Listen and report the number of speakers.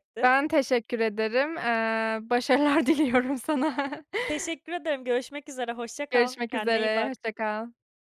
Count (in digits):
2